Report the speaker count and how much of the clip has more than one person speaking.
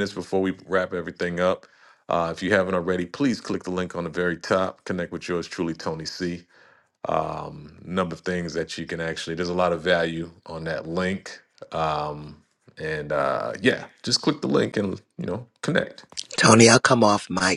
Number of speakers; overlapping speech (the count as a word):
two, no overlap